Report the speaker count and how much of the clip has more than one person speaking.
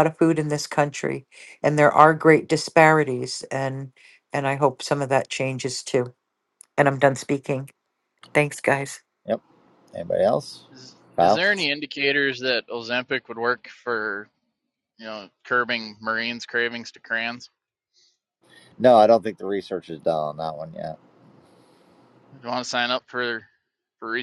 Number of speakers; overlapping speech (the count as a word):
three, about 1%